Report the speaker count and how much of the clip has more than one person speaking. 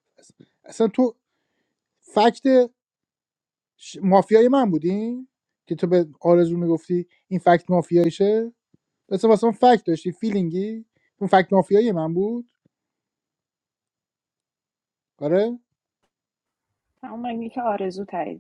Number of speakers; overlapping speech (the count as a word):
two, no overlap